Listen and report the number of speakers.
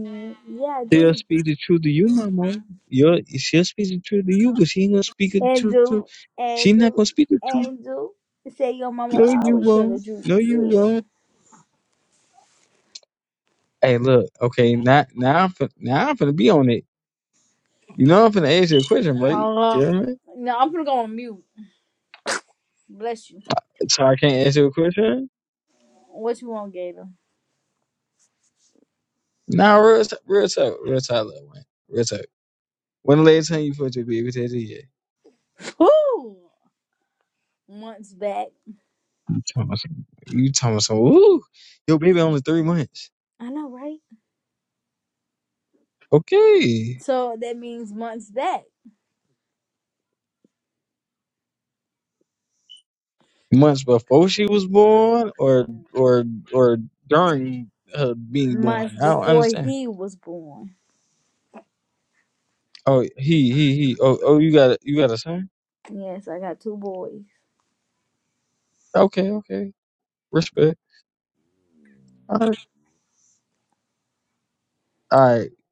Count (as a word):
two